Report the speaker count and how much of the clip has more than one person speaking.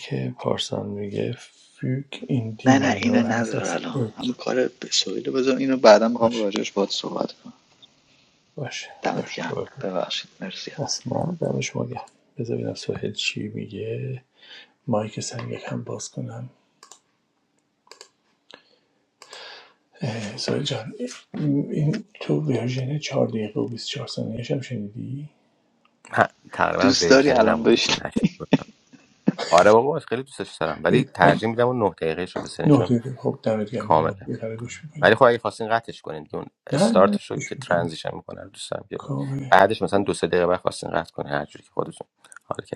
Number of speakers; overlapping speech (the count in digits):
3, about 15%